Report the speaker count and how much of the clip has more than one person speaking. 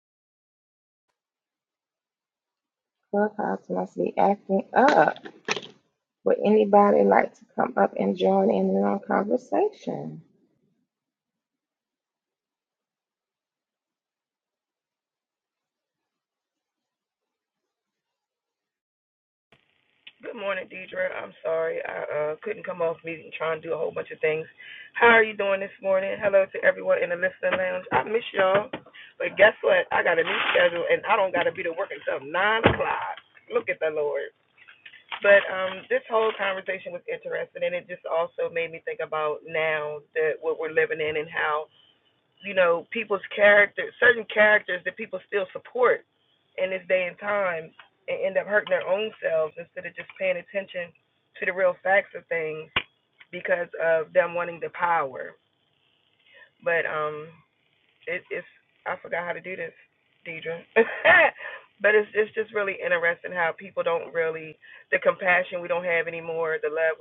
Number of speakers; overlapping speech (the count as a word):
two, no overlap